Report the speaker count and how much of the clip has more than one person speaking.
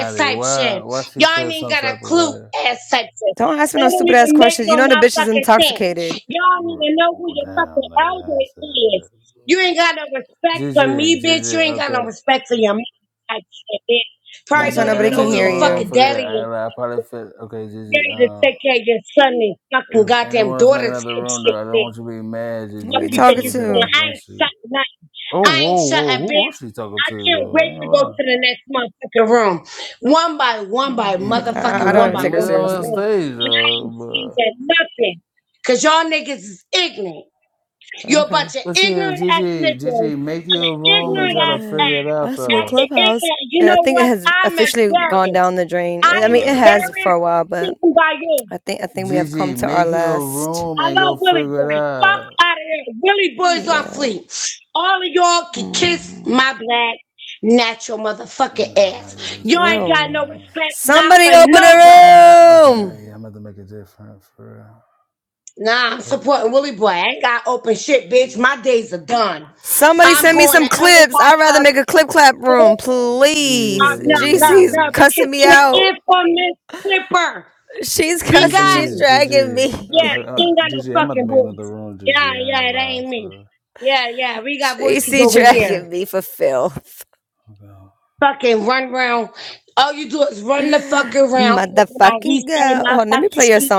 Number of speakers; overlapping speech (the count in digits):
3, about 49%